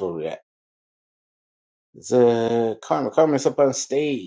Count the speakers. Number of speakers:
one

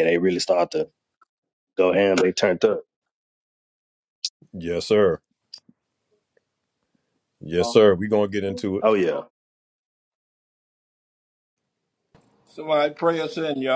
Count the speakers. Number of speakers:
three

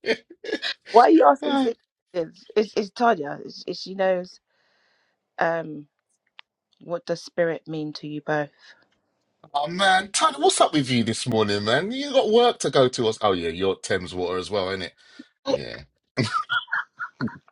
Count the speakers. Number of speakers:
two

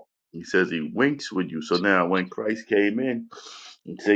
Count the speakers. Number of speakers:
one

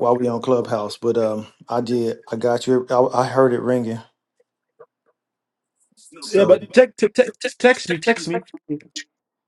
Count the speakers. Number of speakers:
two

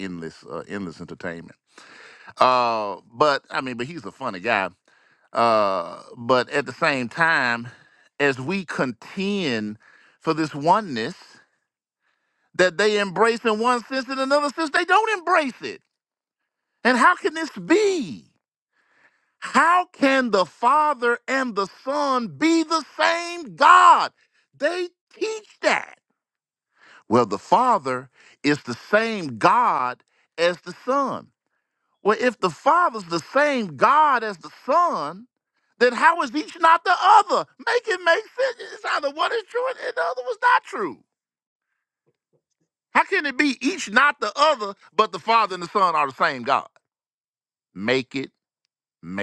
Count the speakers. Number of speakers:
one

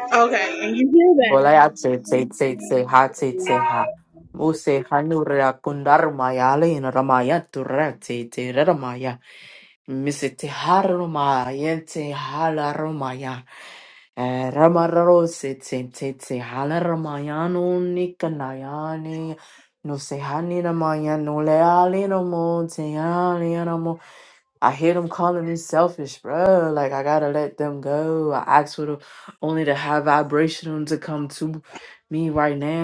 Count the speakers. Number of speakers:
two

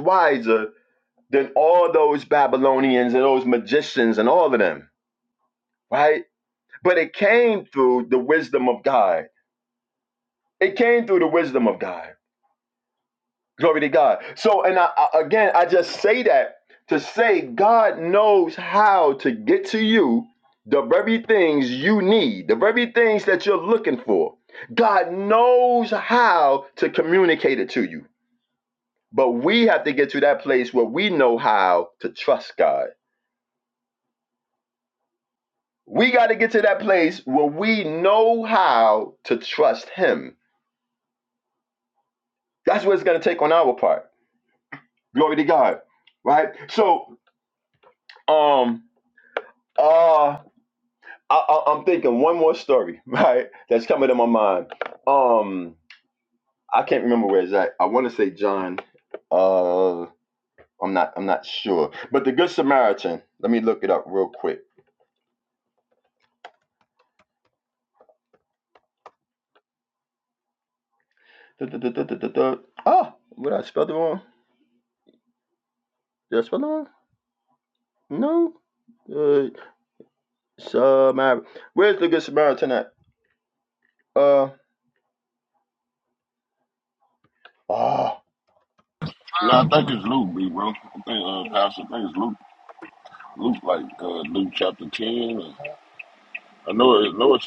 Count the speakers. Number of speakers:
two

